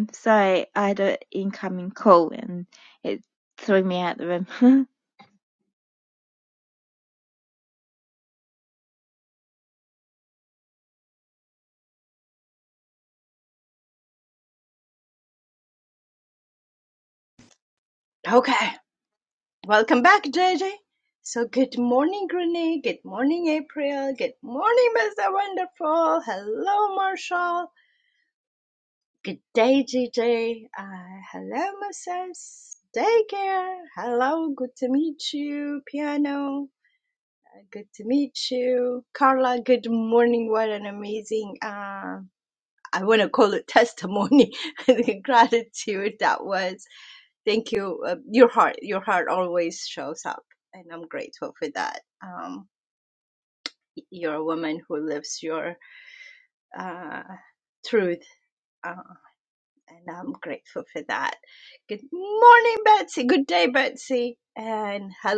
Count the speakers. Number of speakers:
two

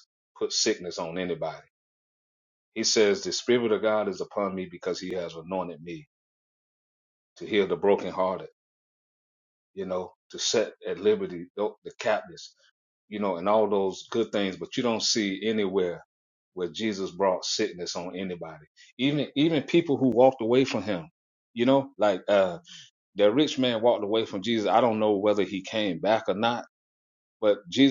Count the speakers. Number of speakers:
one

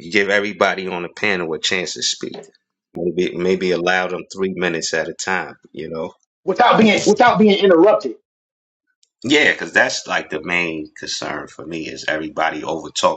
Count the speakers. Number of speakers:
two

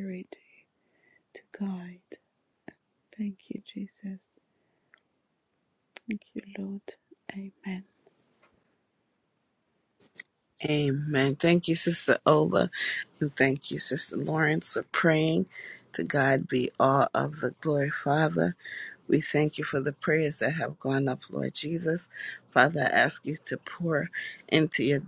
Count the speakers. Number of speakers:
two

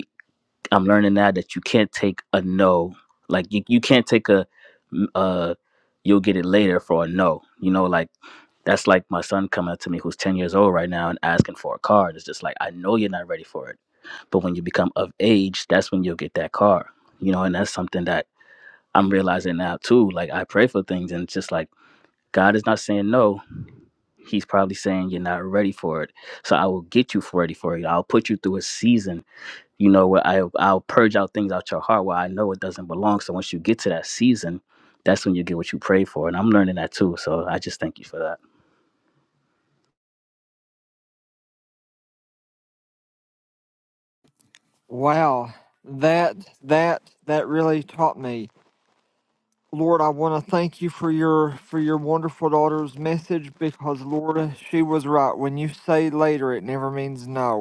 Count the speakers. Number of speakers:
two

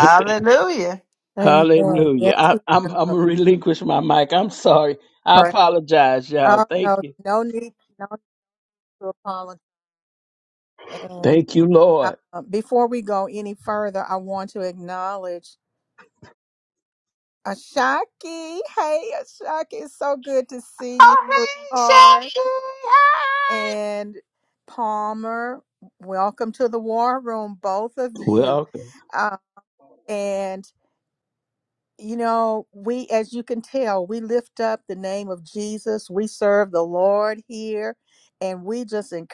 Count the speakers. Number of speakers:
three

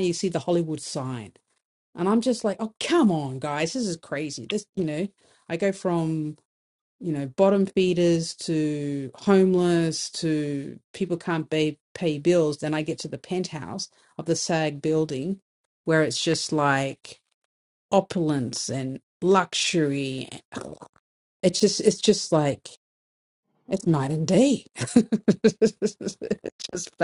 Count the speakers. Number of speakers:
one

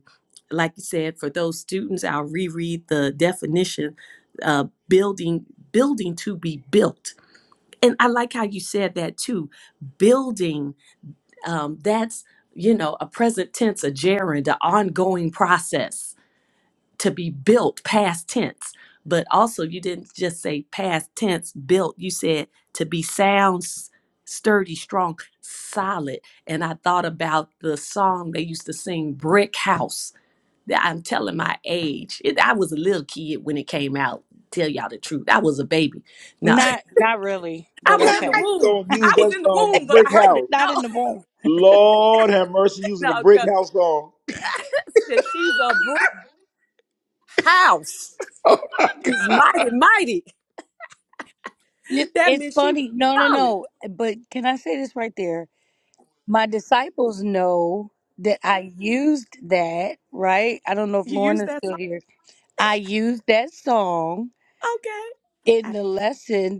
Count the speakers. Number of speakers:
three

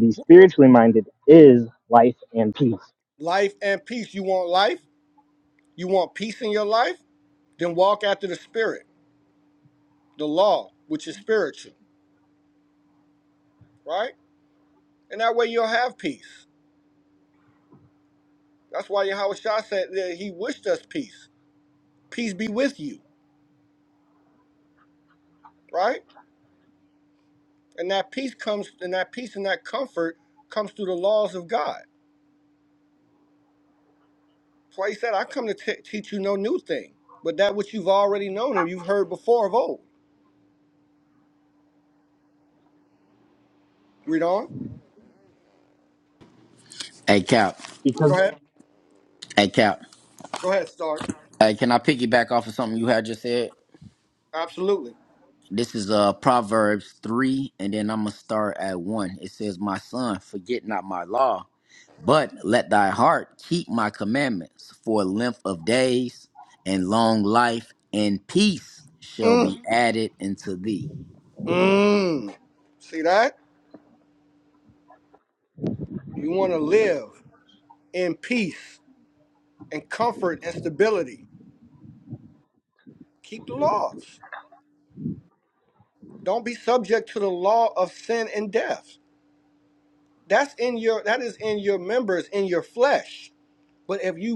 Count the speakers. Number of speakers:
three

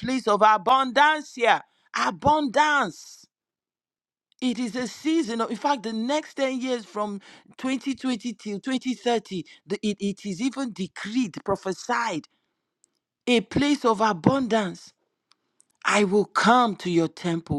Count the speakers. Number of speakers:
one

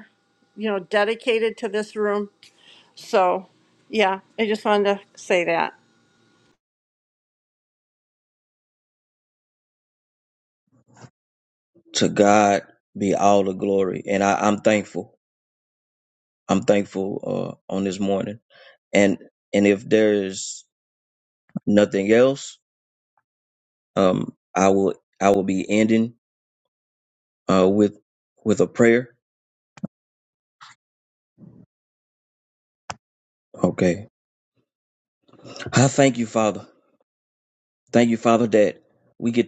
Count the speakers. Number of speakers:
two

